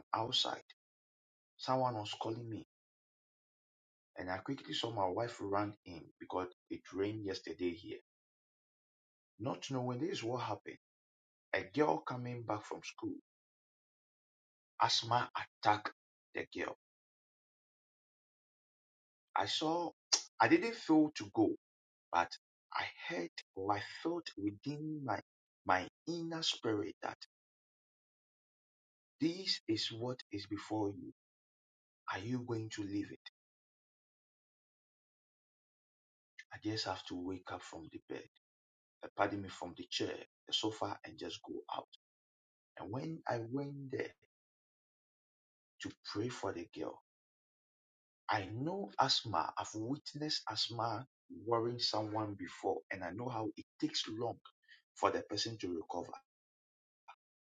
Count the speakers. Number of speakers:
one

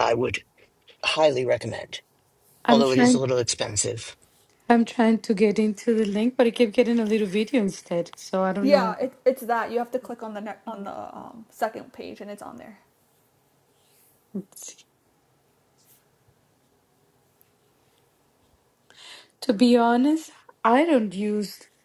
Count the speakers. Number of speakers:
three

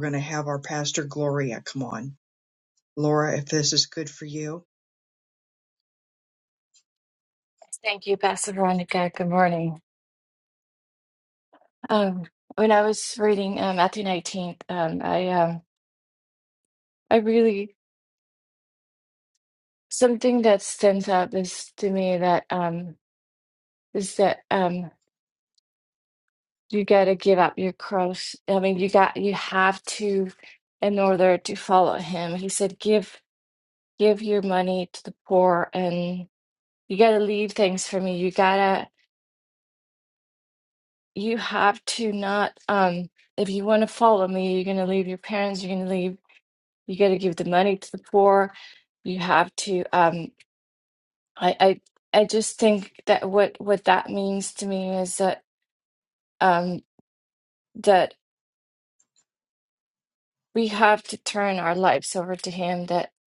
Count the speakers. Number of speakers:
two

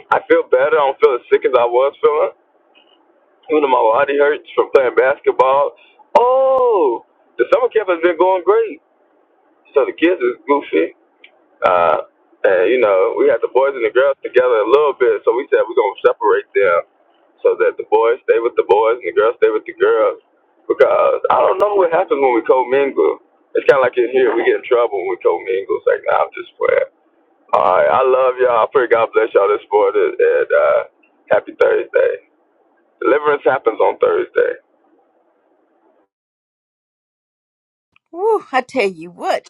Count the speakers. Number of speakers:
two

